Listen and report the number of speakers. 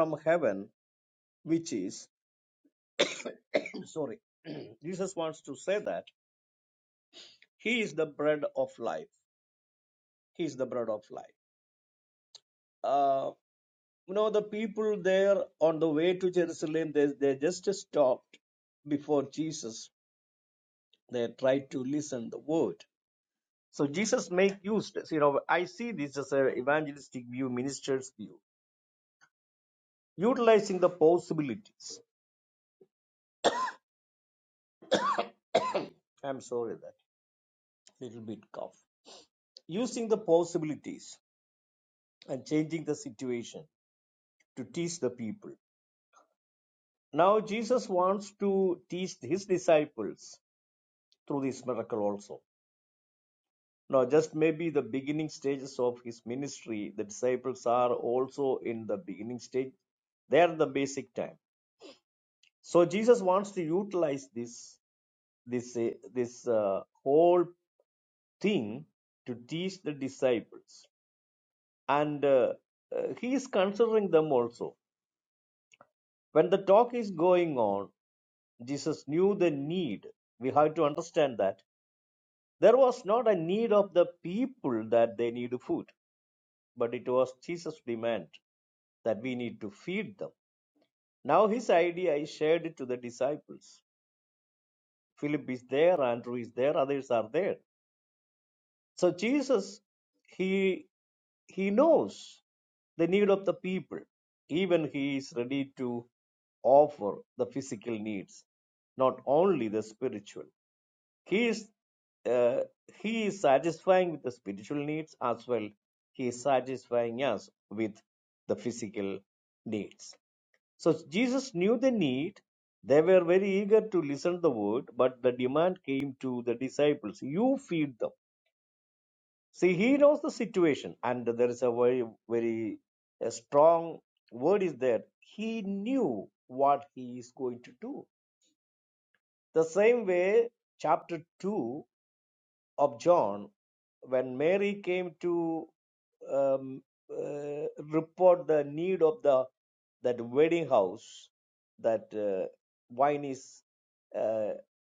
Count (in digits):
1